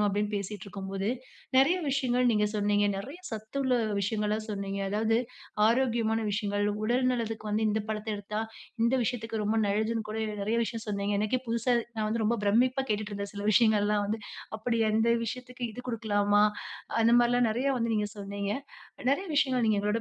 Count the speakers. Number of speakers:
1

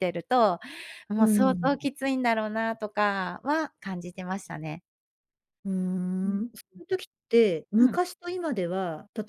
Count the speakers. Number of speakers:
2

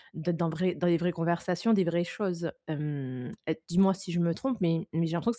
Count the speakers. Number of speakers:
1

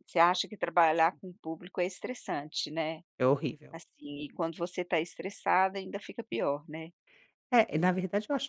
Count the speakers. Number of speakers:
2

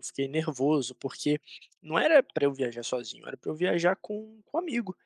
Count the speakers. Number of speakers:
1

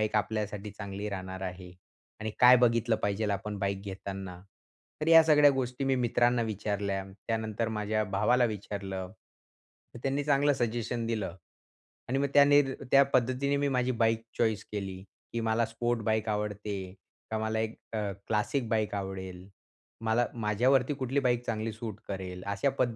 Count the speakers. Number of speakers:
1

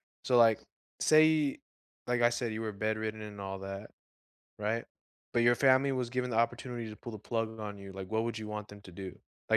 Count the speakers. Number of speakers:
1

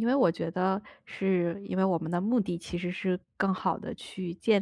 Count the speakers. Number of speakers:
1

